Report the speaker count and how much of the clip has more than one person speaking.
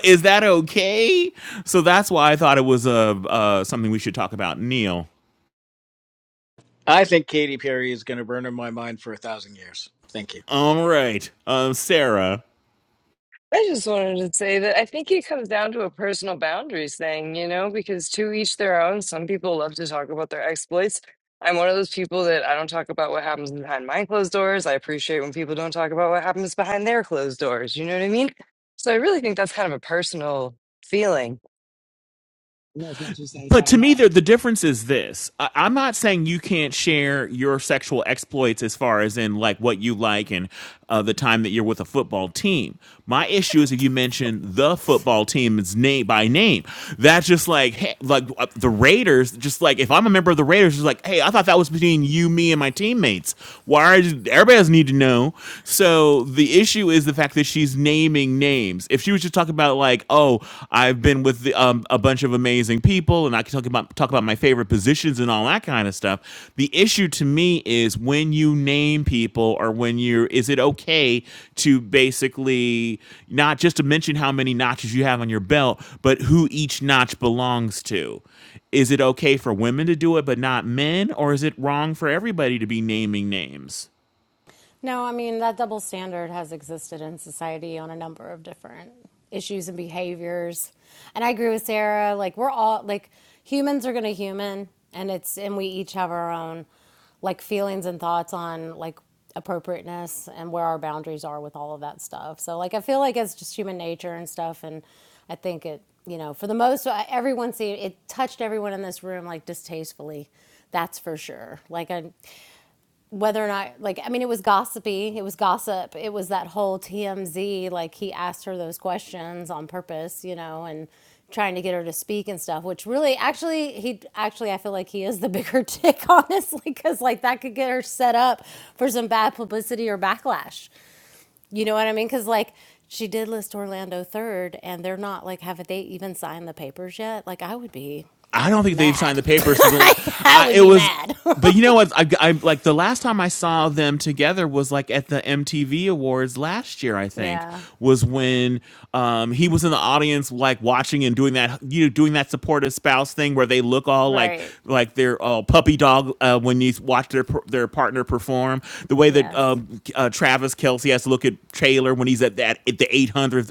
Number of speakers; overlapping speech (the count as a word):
four, about 1%